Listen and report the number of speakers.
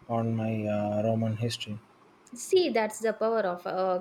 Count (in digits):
2